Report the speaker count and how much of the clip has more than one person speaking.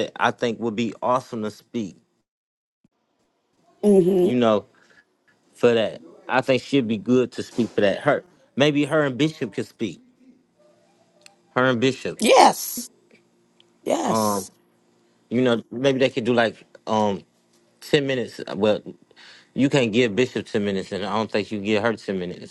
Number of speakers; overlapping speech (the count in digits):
2, about 1%